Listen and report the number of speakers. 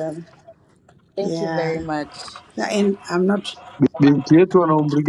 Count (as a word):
three